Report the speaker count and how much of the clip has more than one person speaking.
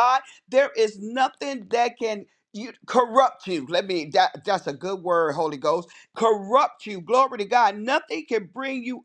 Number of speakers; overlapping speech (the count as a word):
one, no overlap